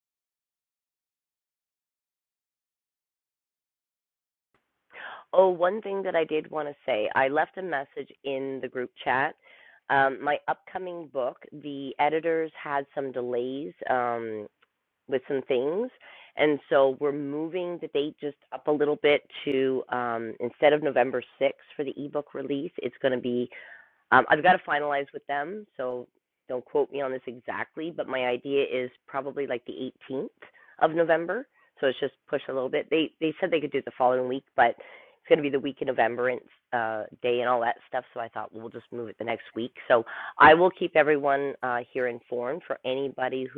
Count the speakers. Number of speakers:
1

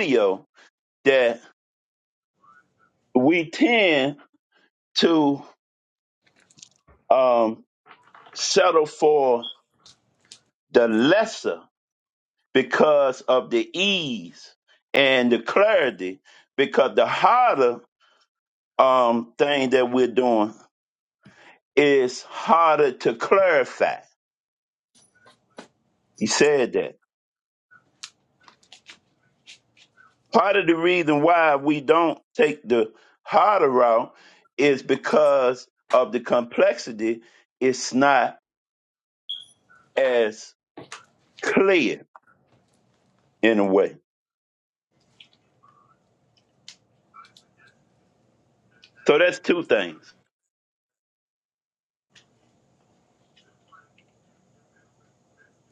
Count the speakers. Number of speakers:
1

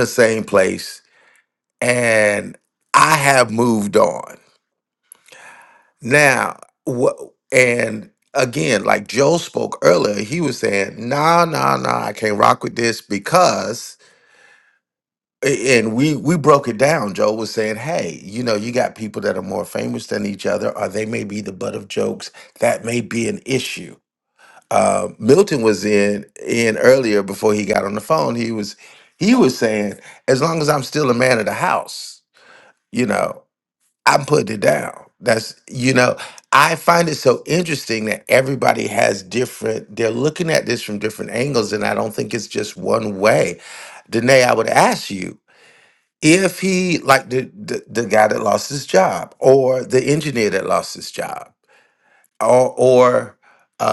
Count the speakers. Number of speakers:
1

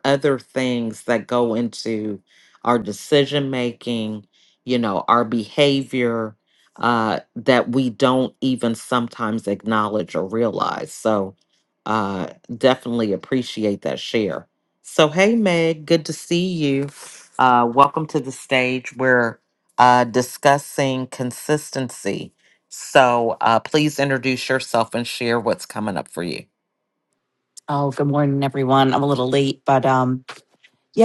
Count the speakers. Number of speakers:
2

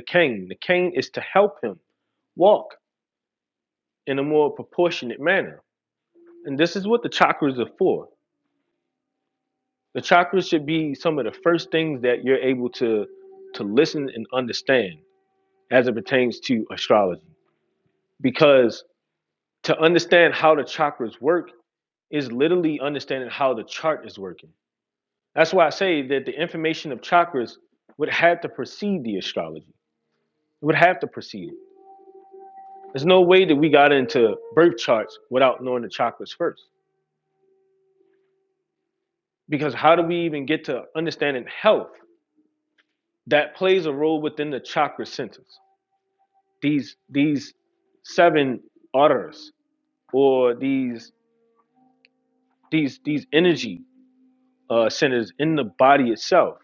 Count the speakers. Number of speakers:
1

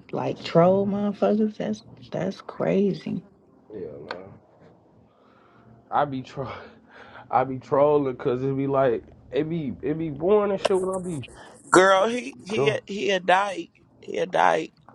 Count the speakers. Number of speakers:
3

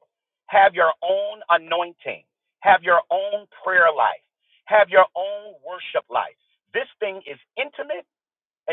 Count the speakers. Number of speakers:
1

